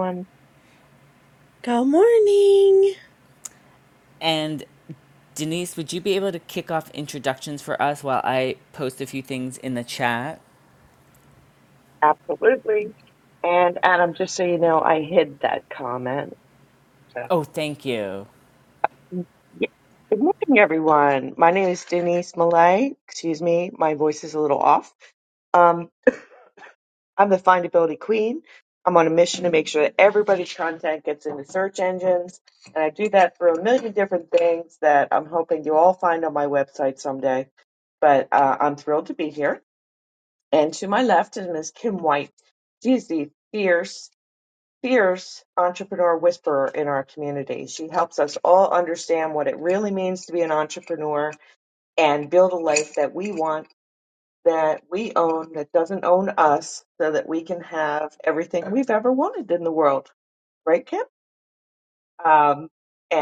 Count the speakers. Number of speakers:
three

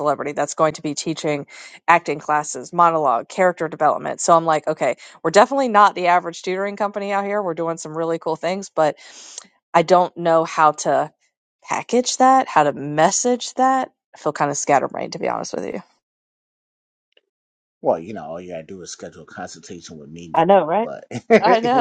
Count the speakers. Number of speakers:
two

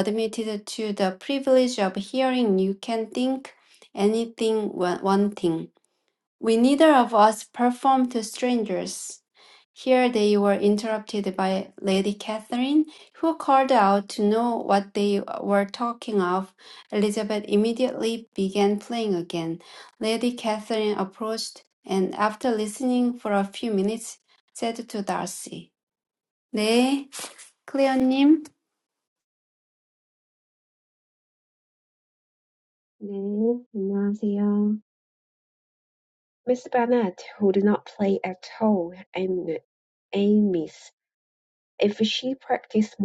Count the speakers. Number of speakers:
two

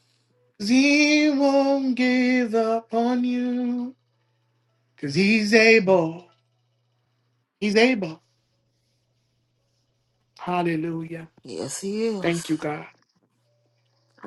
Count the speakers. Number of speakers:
two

